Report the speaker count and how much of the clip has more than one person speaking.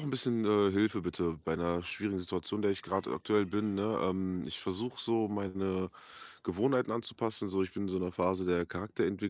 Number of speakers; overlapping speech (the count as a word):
one, no overlap